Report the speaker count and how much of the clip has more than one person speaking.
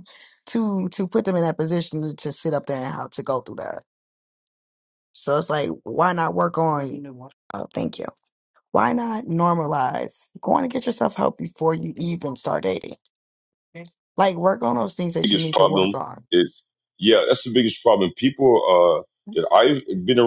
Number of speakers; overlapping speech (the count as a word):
two, about 5%